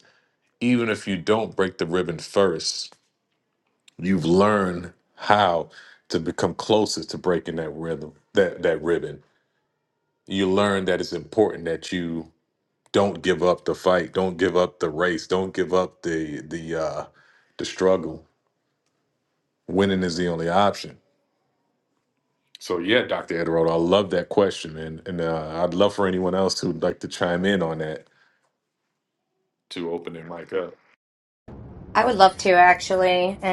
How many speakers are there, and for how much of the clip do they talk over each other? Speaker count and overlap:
two, no overlap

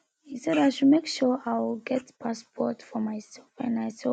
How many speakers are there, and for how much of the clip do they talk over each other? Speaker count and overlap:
one, no overlap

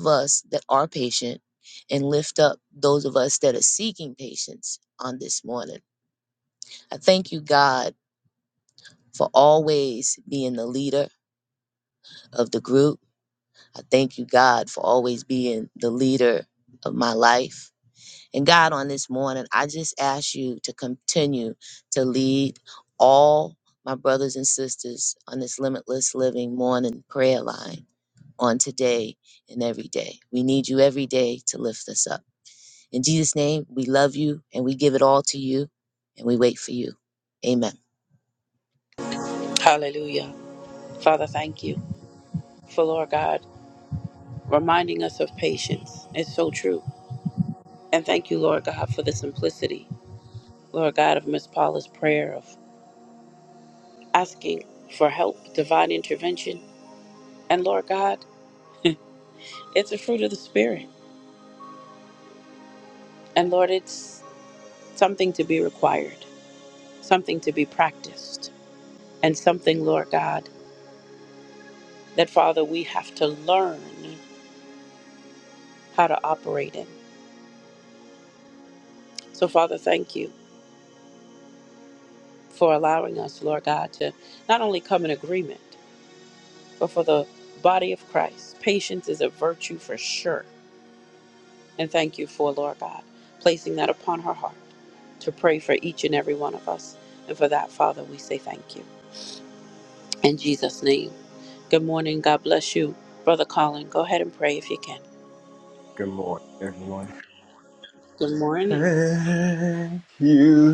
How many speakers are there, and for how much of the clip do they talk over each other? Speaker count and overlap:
three, under 1%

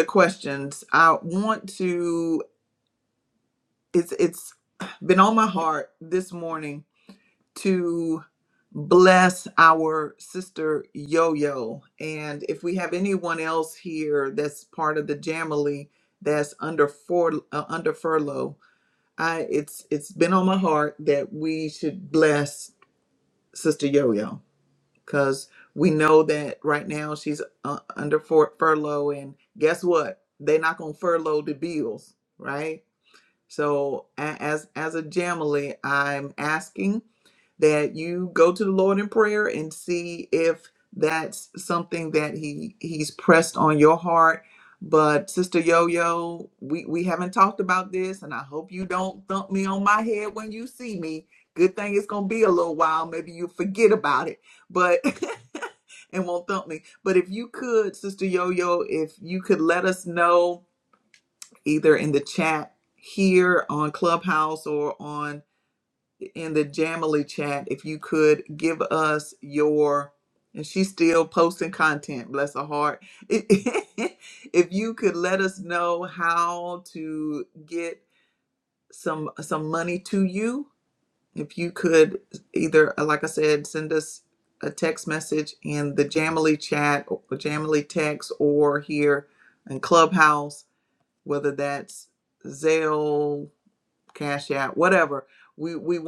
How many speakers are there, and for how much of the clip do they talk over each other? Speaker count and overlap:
one, no overlap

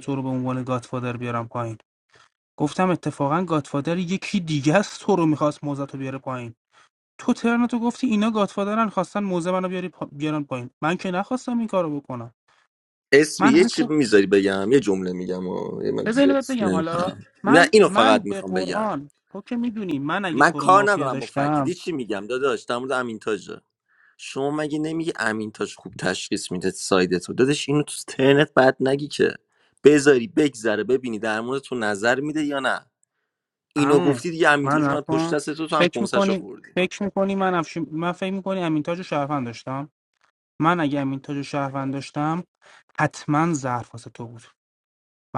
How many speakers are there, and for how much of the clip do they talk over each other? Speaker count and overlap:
two, about 14%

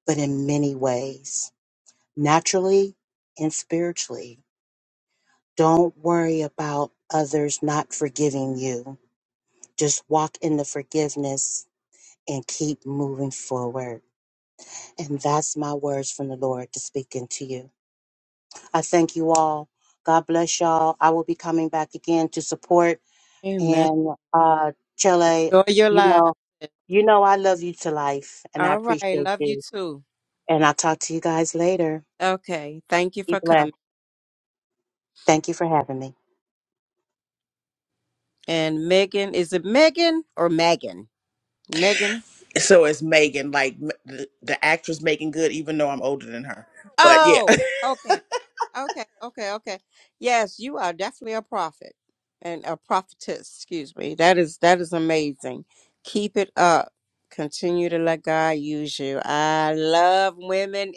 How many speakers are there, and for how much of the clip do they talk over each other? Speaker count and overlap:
three, about 5%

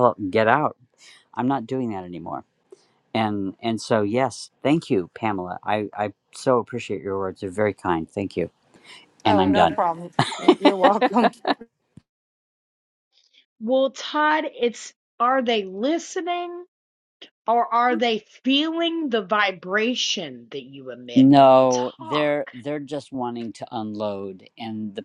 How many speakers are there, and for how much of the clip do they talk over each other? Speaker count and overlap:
three, about 7%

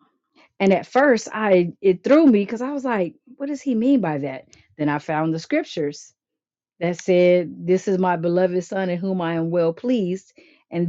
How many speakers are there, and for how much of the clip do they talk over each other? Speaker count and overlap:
one, no overlap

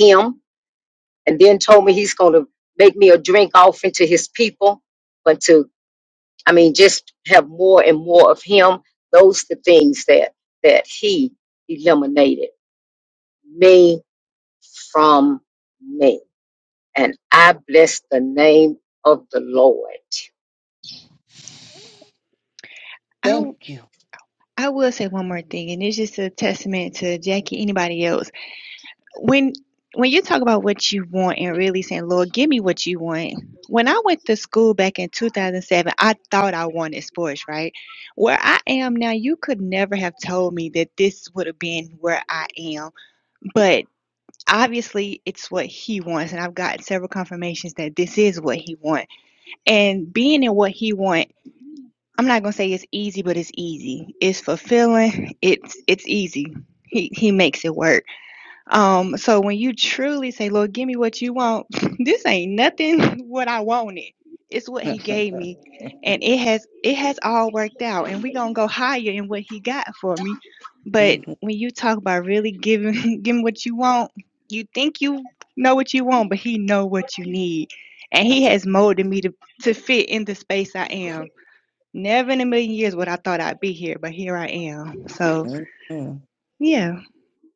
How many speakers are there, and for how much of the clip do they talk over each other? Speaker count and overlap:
three, about 1%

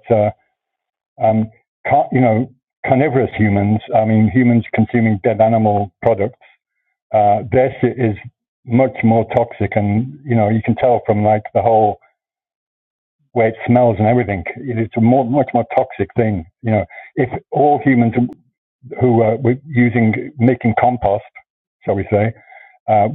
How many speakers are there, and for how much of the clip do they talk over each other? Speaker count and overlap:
one, no overlap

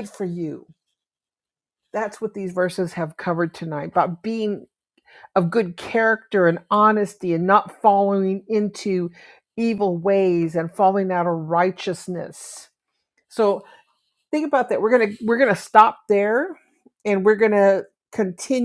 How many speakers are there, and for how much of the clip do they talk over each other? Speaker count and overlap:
one, no overlap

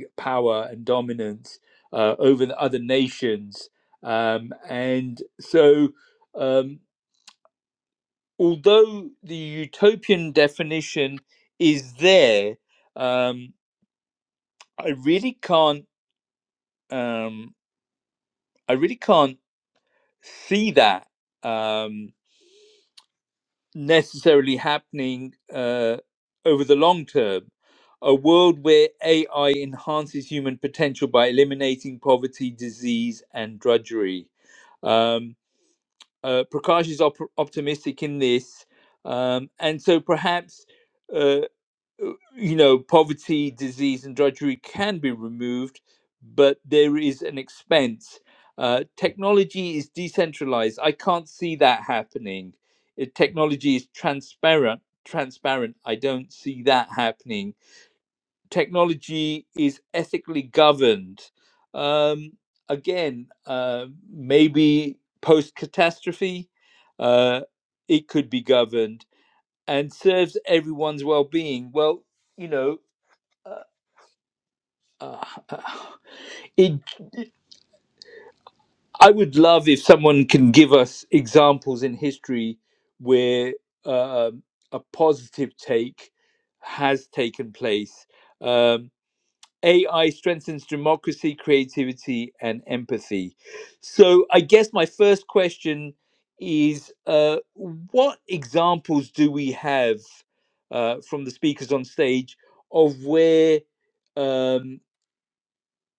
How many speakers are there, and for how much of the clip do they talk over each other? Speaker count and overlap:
one, no overlap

